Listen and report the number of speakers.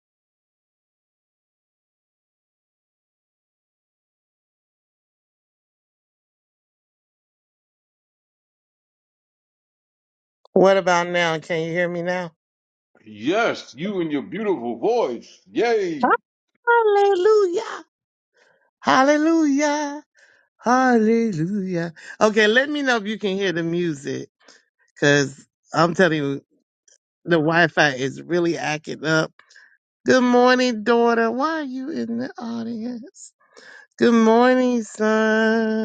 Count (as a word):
two